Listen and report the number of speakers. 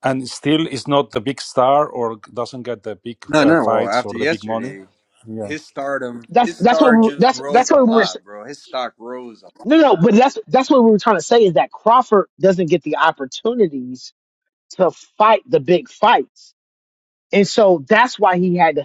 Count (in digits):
3